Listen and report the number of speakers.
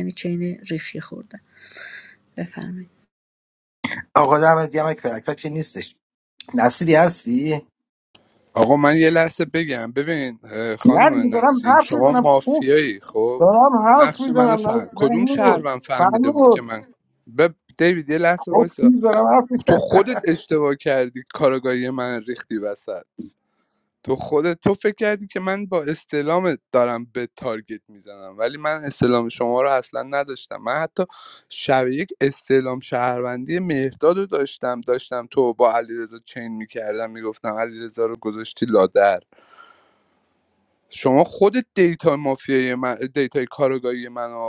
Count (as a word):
three